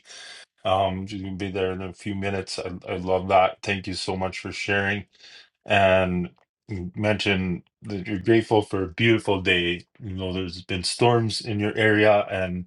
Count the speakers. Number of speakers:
1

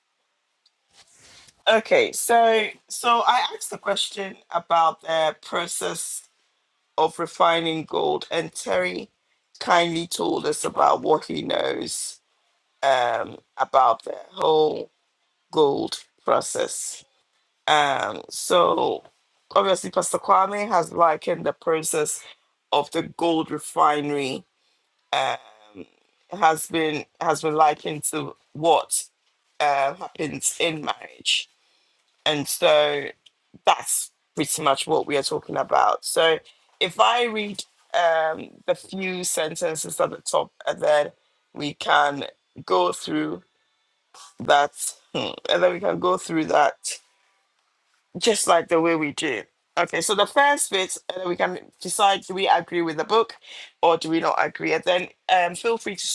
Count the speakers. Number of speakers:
1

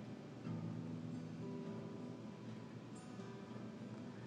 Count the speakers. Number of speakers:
0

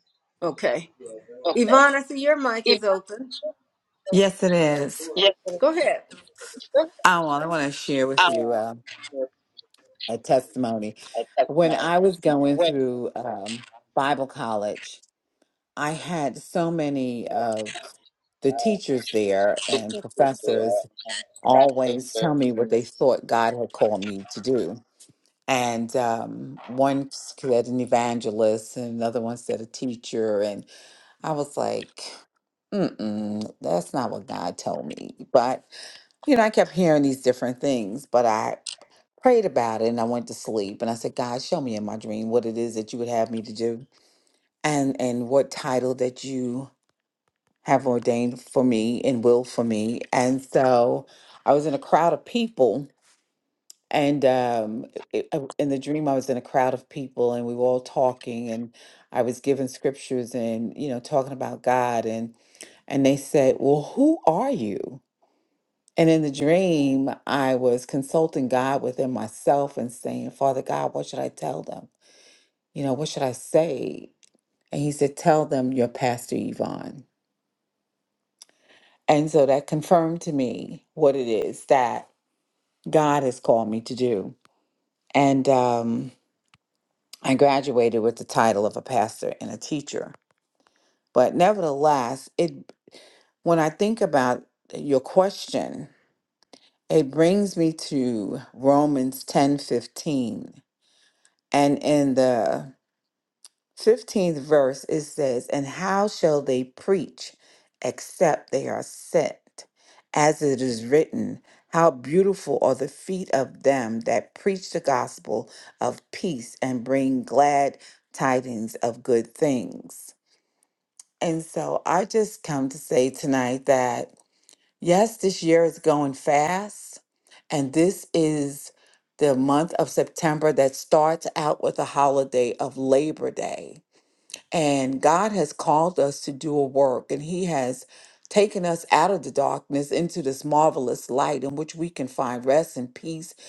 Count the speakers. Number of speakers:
3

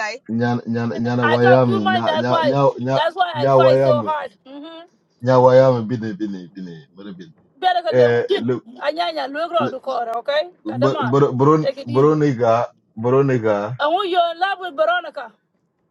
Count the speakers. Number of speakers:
2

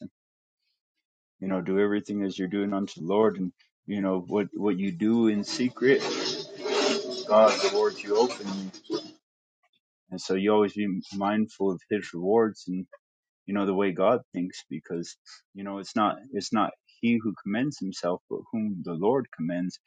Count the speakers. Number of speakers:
1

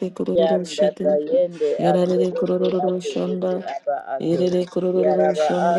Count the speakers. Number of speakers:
2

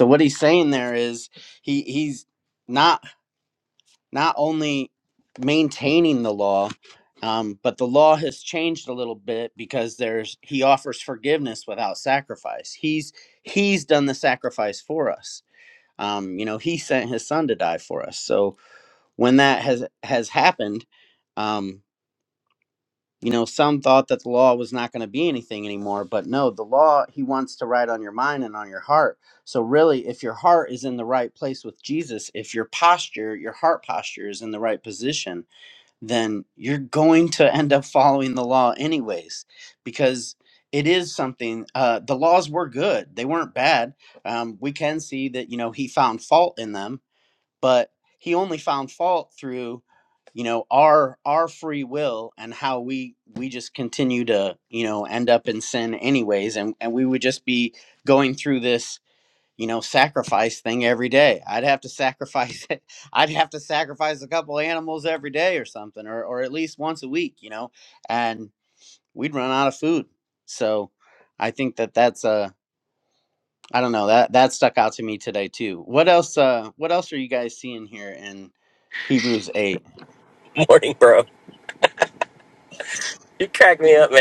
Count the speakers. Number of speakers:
2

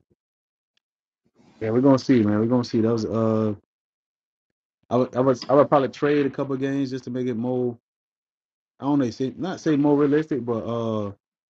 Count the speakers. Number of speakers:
1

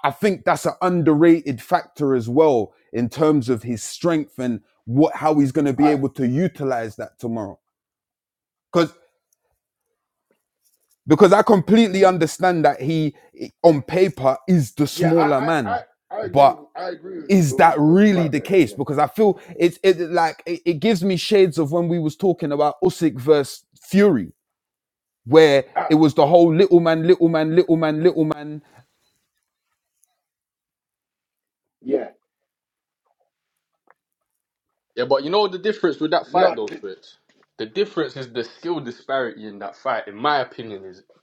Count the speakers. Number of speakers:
3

